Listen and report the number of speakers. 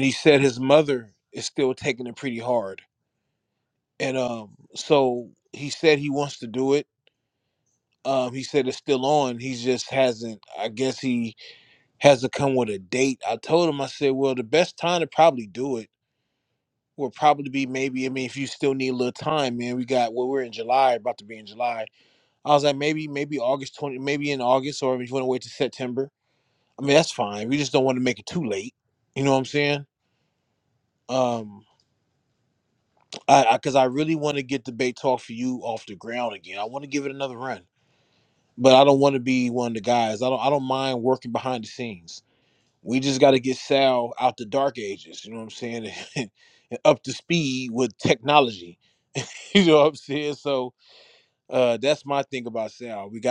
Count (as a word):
one